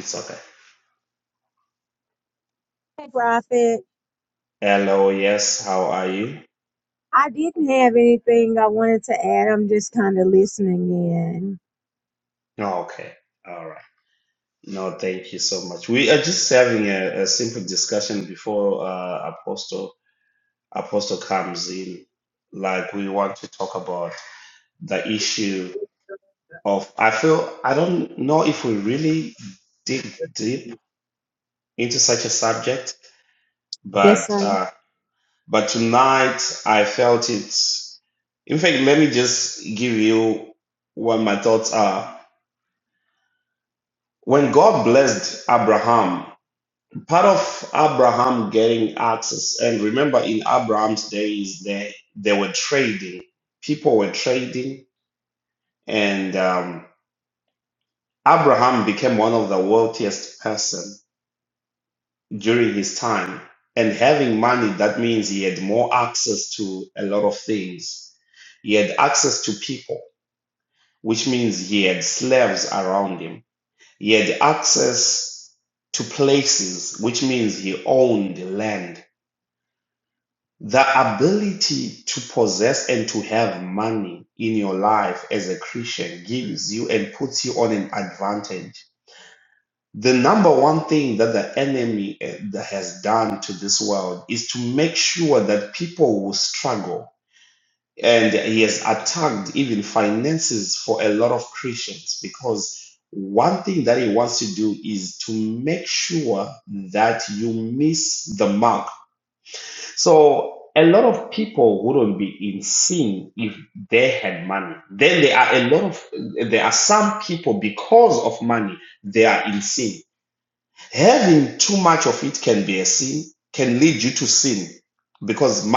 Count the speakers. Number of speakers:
two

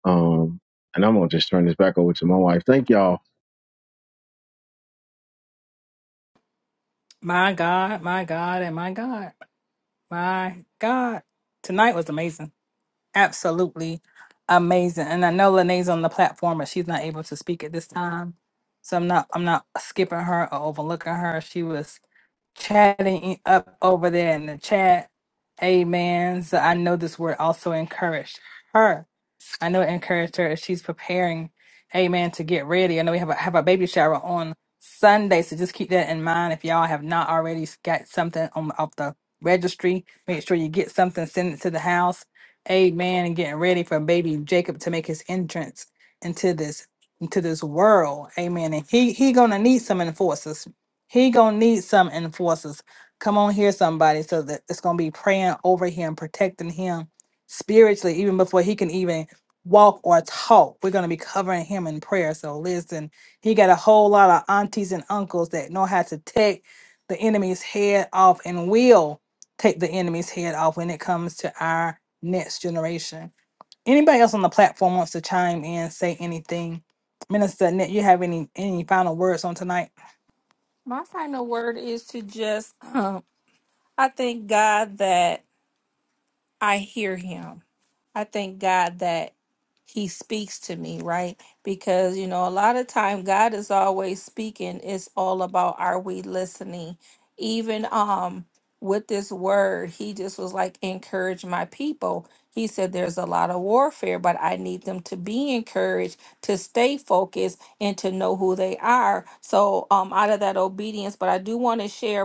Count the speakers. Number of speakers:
three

